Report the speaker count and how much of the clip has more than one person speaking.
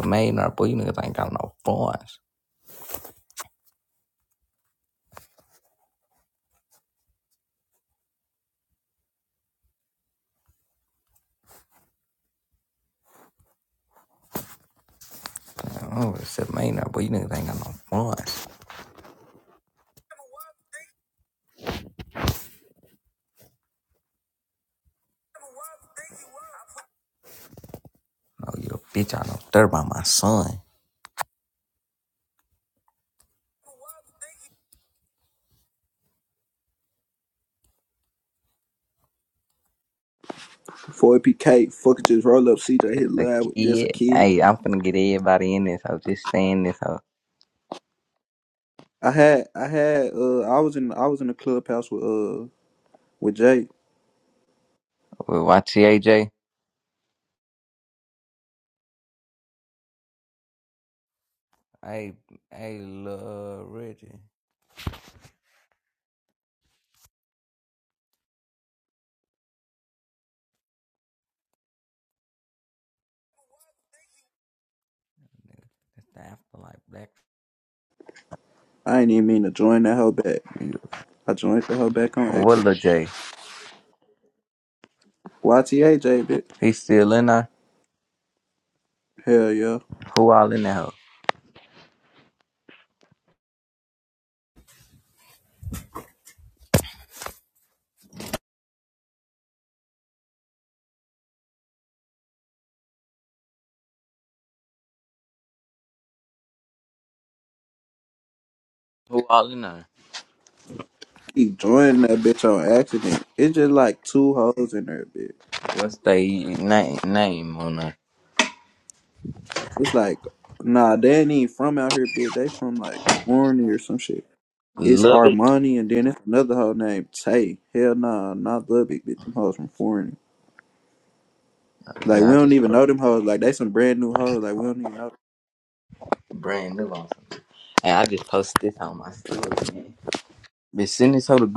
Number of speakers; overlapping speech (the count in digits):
2, about 2%